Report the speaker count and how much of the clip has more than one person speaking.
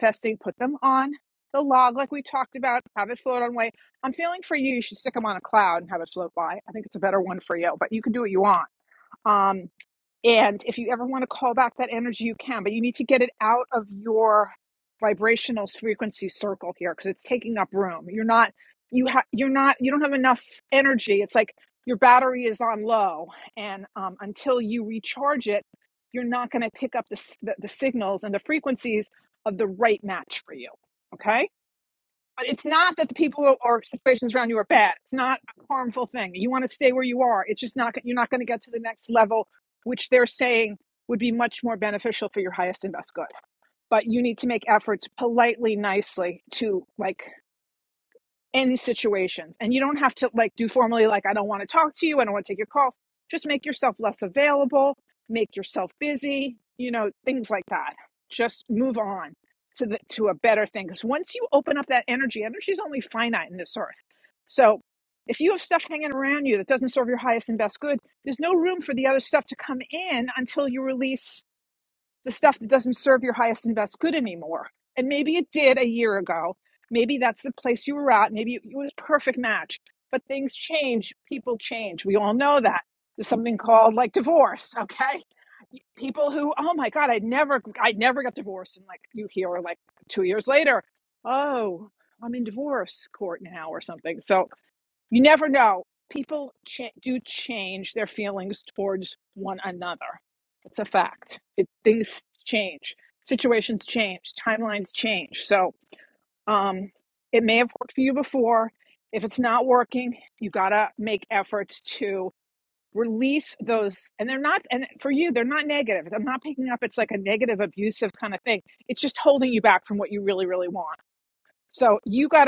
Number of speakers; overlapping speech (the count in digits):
1, no overlap